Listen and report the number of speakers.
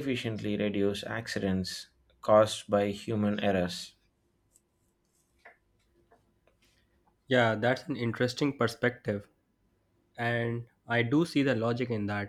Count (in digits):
2